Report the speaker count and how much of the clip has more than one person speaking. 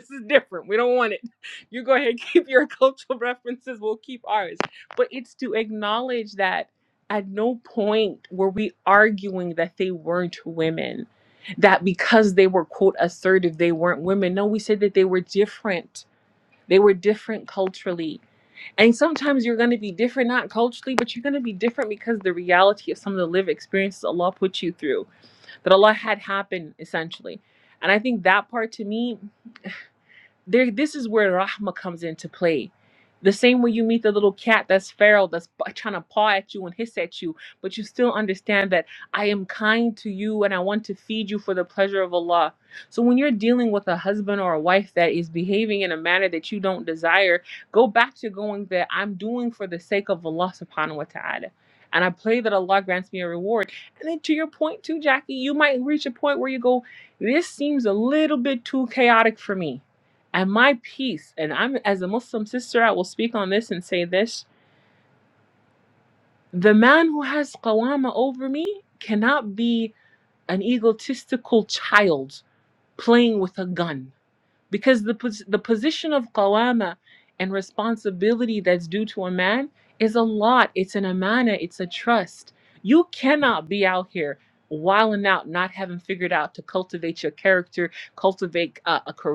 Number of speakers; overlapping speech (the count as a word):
one, no overlap